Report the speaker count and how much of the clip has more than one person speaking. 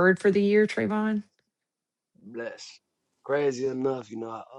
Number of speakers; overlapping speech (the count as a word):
two, no overlap